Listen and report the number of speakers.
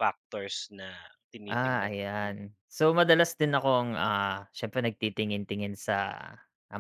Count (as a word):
two